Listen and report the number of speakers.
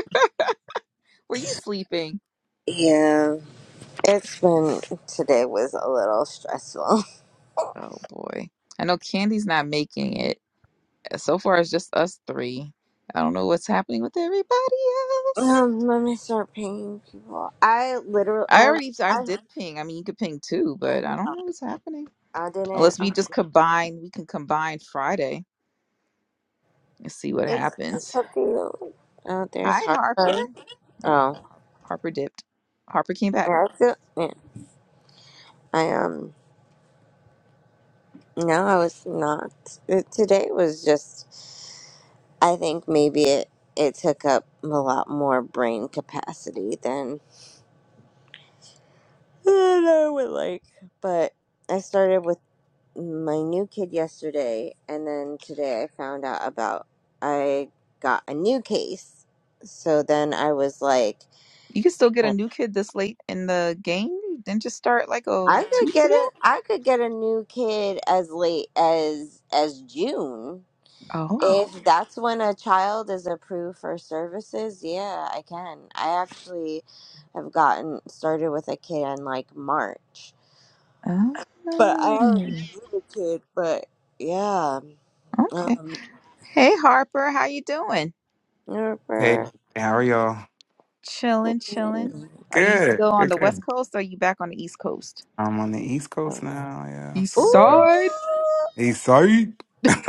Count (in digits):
3